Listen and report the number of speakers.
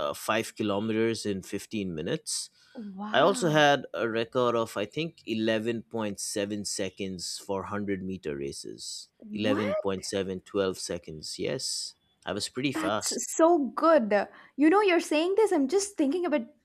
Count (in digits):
2